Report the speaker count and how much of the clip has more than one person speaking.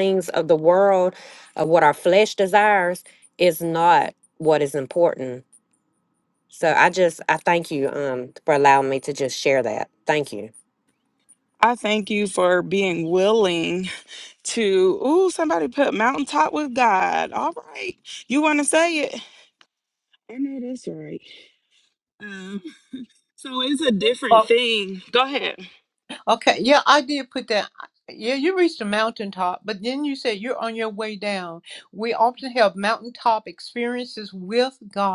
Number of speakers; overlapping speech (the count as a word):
three, no overlap